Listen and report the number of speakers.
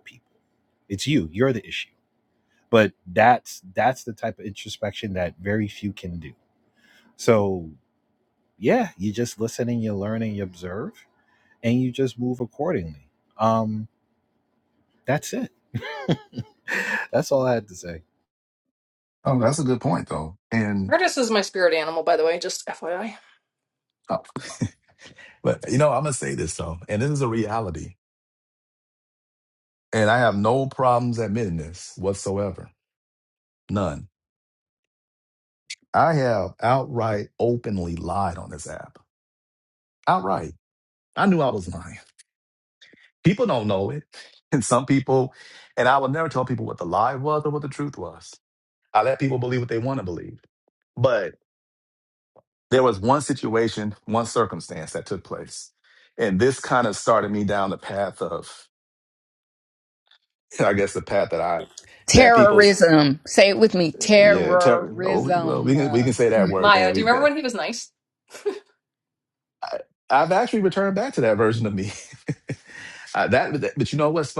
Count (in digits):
4